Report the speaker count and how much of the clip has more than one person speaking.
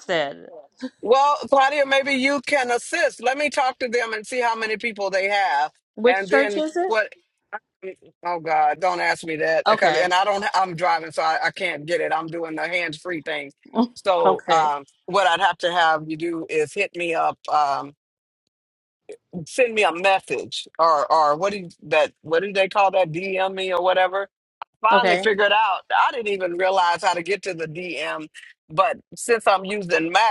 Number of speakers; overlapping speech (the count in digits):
2, about 7%